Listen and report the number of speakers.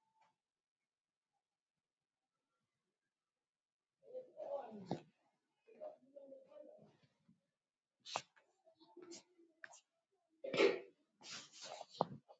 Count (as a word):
zero